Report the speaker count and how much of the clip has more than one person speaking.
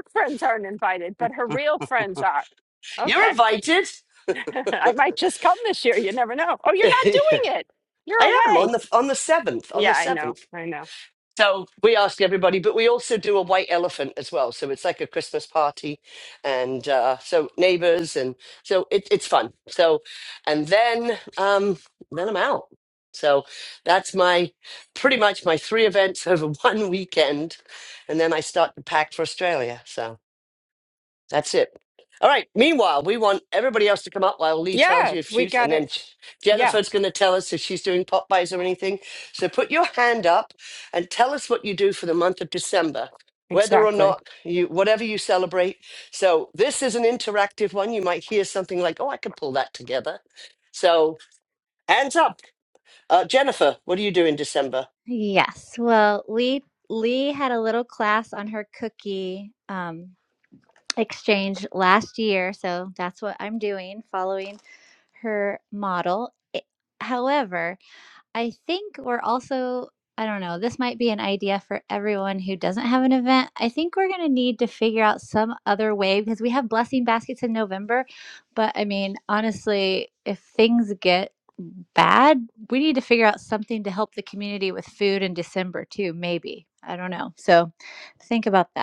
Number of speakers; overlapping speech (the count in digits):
3, about 4%